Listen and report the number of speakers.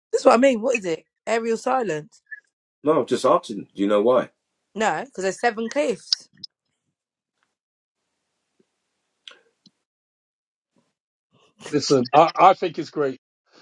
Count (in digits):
3